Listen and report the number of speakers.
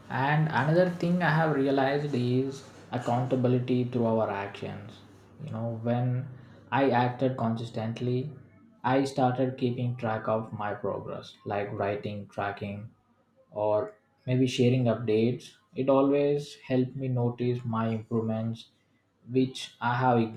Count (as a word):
one